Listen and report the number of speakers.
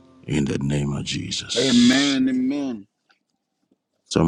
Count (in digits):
2